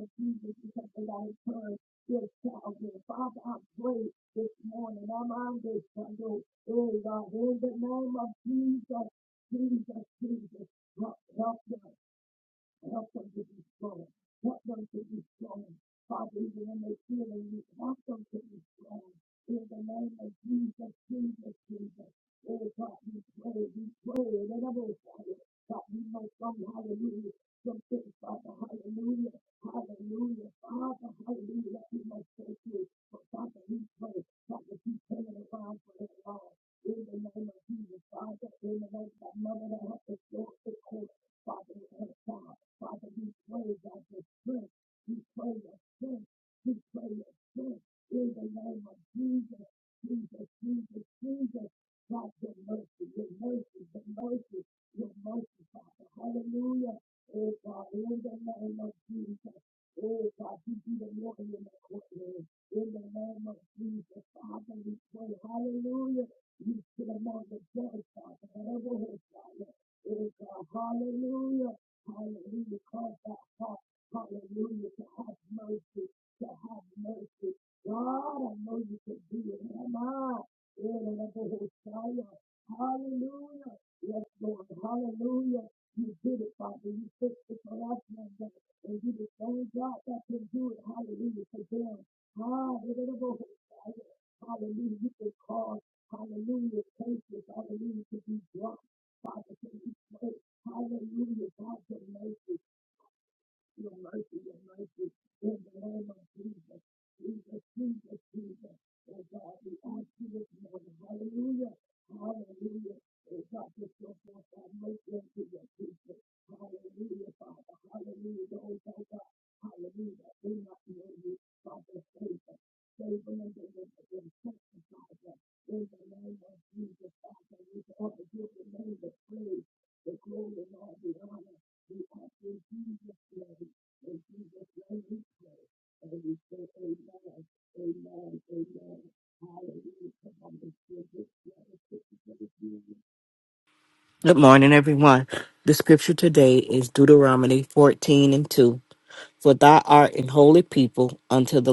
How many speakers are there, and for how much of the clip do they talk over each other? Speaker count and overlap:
2, no overlap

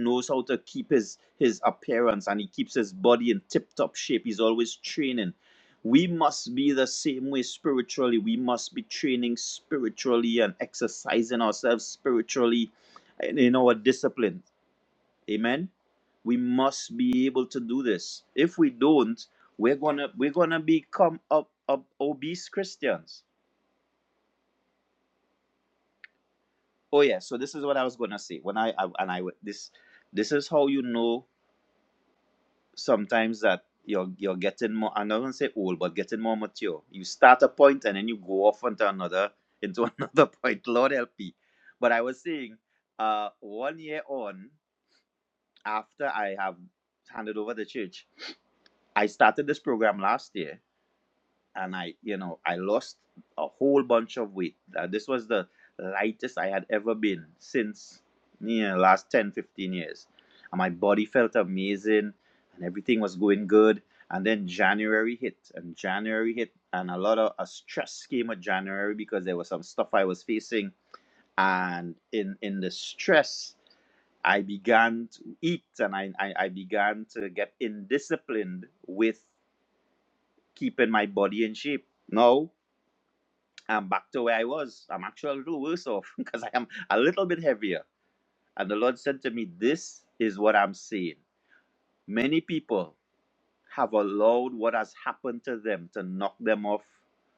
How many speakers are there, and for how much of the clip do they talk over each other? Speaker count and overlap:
1, no overlap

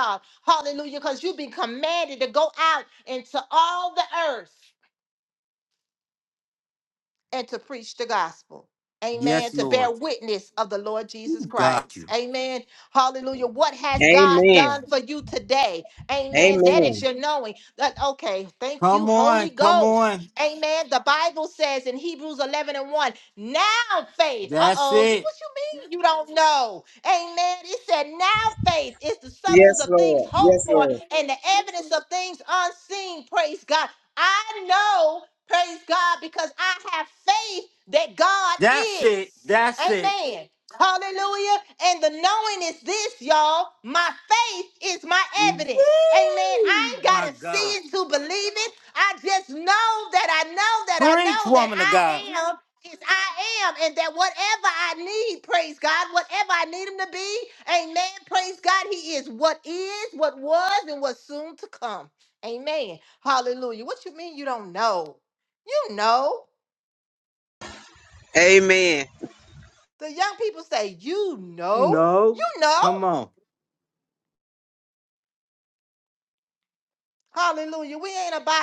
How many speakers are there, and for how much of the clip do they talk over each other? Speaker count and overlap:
3, about 13%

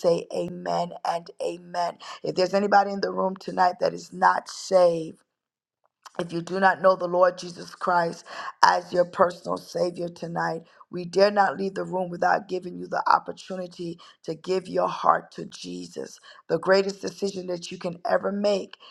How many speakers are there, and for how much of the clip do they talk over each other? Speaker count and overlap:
1, no overlap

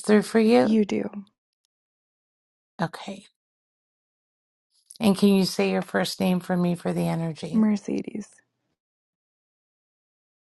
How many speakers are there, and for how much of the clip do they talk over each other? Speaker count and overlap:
2, about 1%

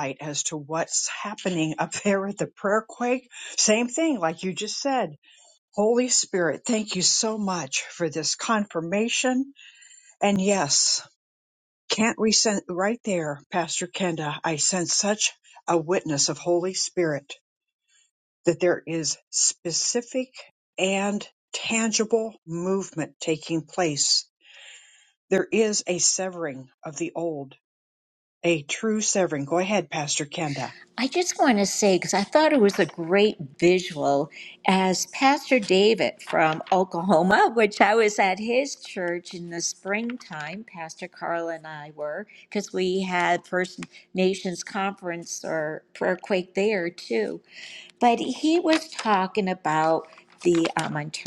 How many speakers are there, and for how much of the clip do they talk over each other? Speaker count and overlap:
2, no overlap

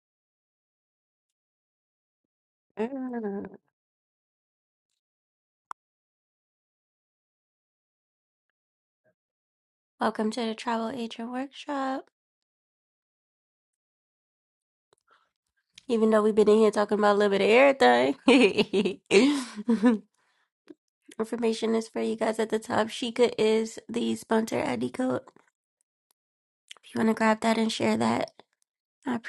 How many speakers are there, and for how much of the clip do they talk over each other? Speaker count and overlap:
1, no overlap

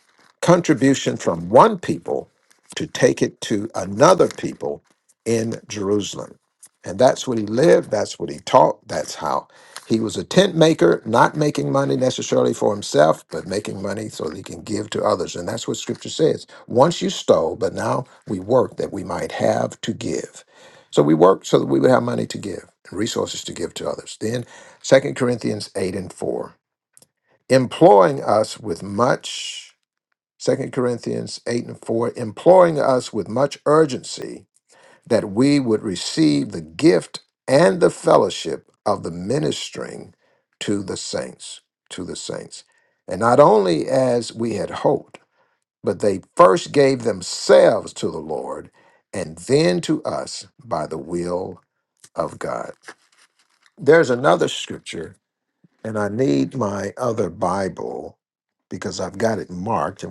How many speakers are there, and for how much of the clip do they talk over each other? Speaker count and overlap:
1, no overlap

